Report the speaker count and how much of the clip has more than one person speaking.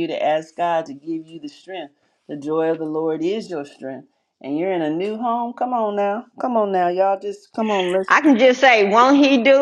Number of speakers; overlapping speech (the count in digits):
2, no overlap